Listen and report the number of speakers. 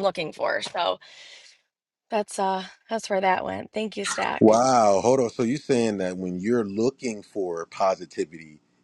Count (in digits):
2